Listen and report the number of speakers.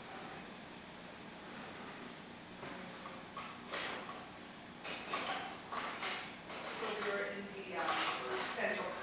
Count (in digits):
1